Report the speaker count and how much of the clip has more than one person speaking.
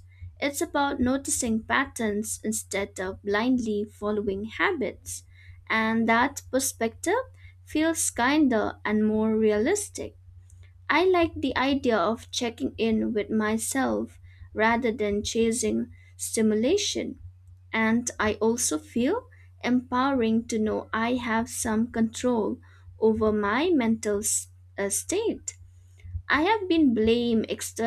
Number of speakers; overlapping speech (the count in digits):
1, no overlap